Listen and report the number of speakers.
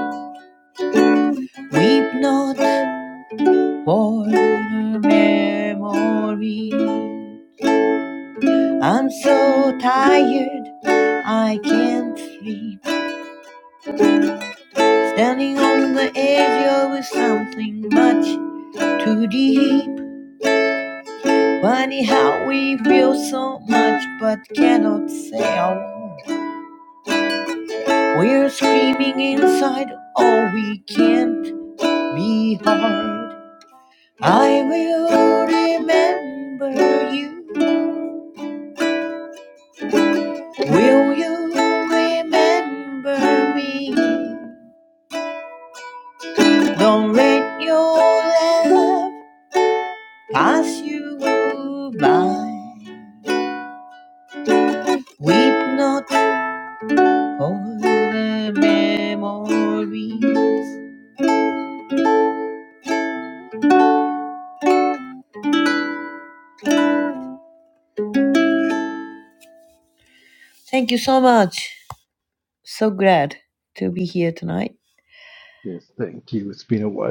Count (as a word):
two